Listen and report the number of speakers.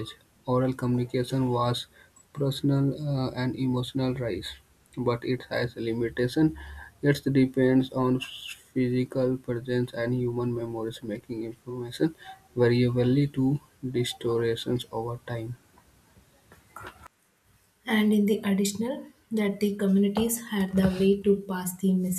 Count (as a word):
two